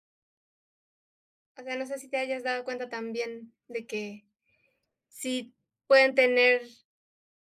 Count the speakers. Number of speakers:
1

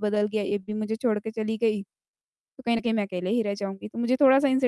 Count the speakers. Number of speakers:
1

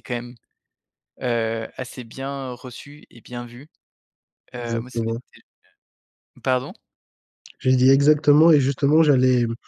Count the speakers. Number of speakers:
2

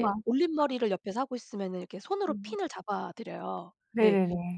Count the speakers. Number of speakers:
2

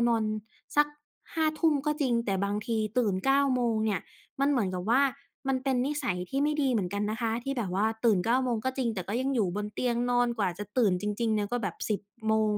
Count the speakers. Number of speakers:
1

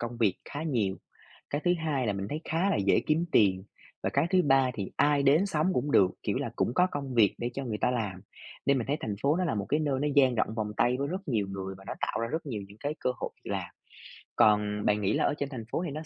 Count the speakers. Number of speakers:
1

